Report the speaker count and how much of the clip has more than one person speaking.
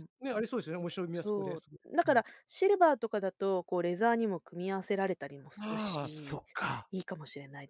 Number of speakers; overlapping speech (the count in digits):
2, about 13%